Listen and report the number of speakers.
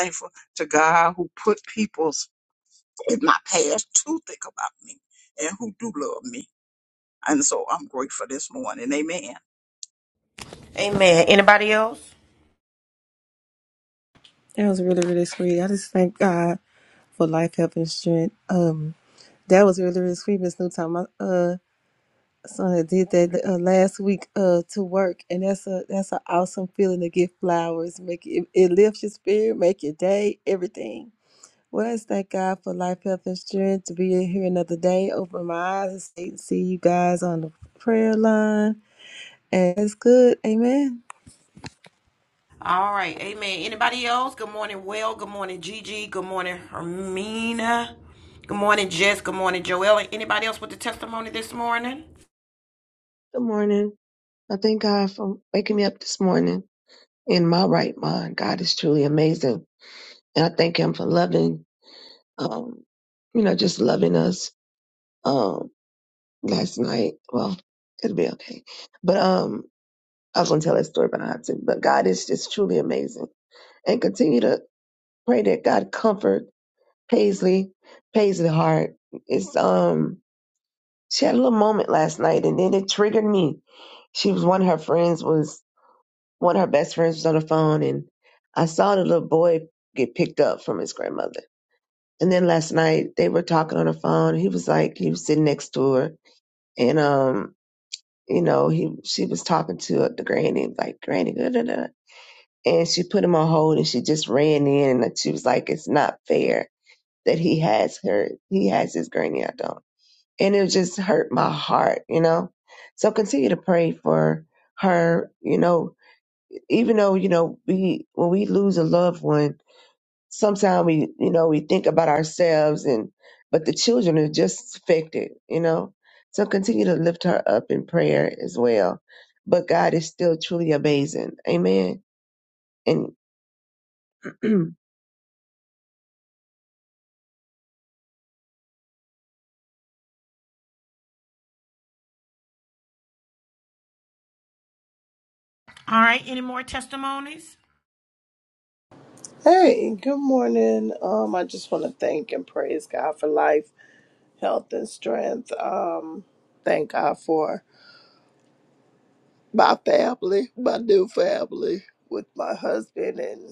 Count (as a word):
five